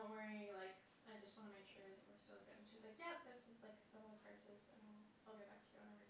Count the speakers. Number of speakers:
one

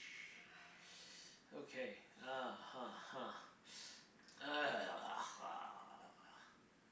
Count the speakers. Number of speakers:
one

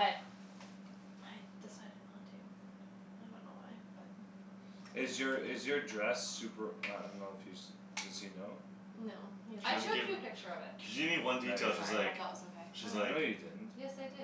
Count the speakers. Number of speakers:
four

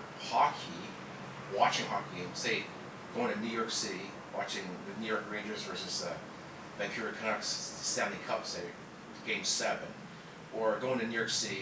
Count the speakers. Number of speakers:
one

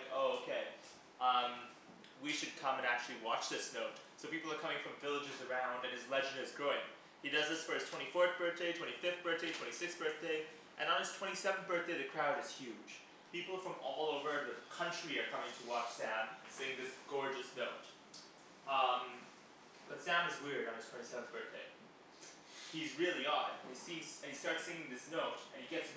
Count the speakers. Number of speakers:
one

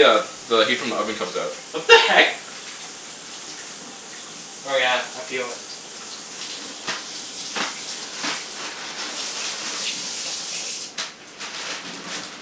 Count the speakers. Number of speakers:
two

